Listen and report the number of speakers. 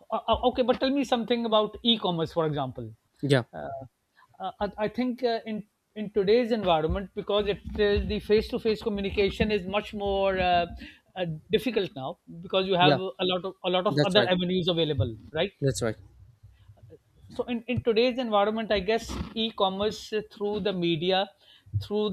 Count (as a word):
two